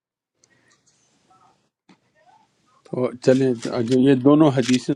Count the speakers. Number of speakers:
one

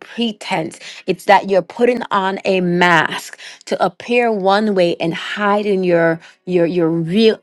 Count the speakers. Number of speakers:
one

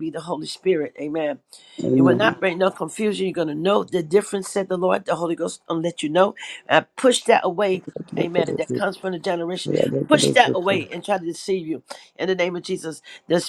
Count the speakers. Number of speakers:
two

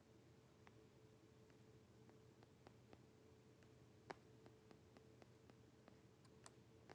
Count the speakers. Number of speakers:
zero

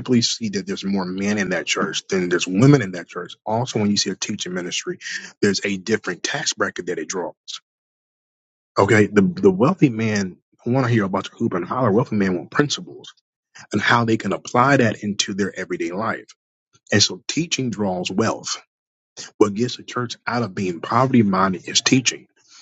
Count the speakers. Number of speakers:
one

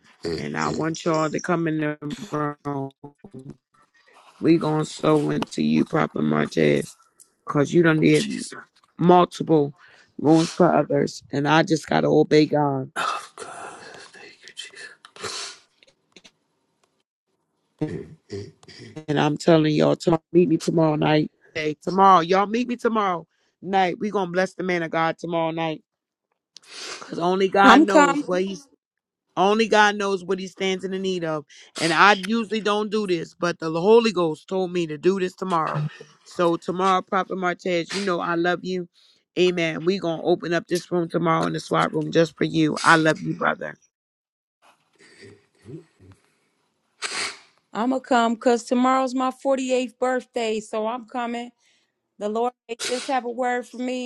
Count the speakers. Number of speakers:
three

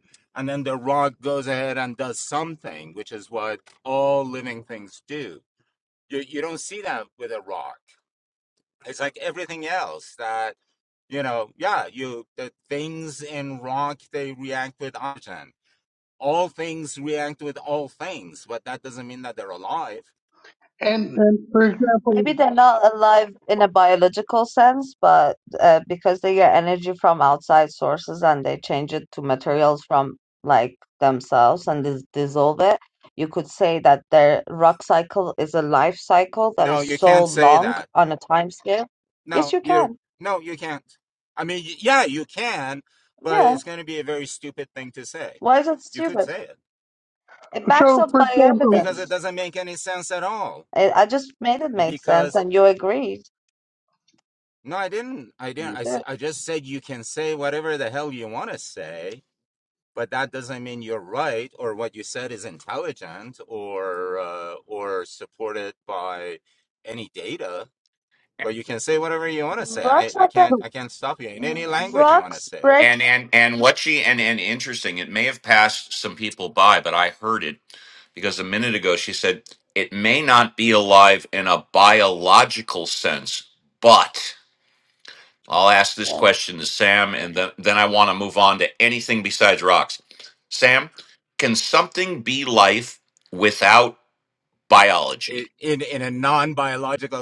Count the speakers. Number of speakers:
four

